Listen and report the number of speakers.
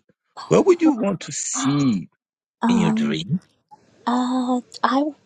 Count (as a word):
two